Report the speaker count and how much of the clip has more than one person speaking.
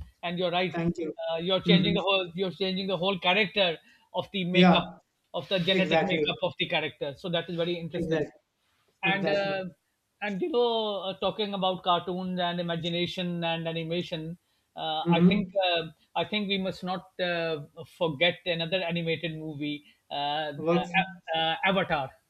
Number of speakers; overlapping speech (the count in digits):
2, about 12%